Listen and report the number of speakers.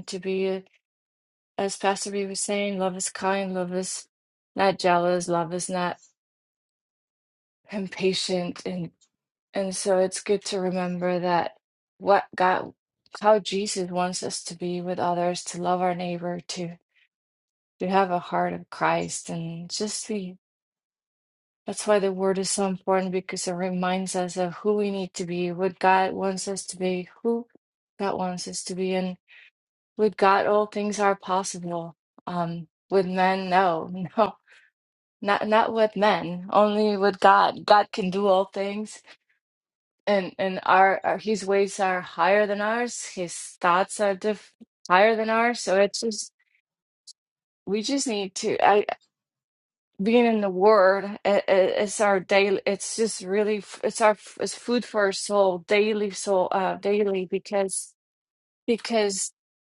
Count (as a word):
one